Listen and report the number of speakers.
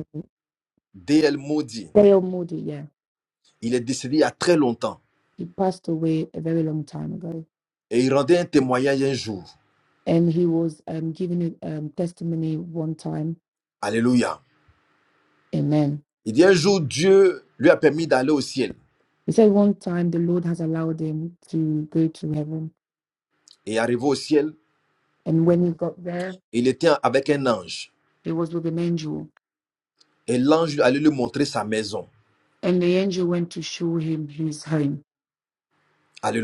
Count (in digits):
2